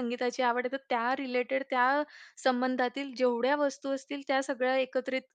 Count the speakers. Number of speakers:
1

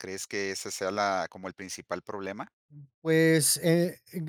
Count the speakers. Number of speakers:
2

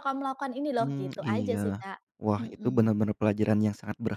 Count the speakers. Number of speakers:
2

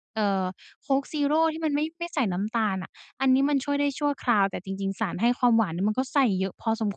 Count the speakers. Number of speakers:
1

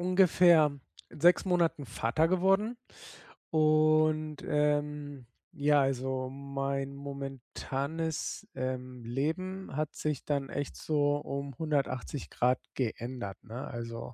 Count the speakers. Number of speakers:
1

